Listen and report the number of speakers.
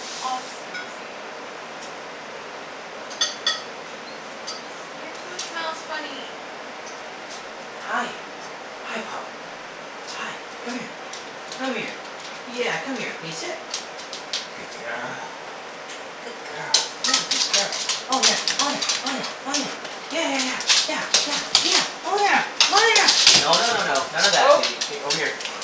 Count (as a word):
two